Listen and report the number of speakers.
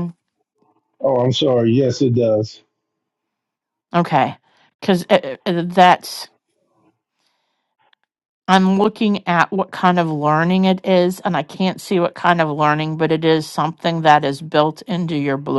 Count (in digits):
2